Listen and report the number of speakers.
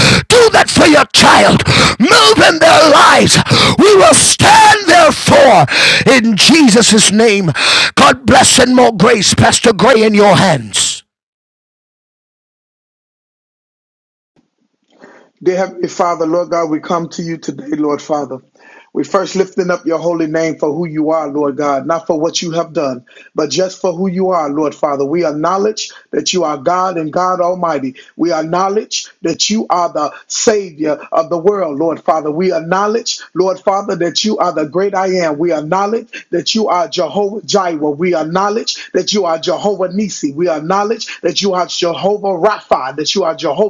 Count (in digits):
2